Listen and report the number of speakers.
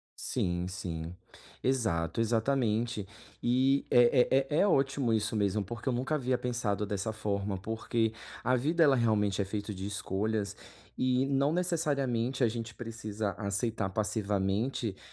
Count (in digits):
1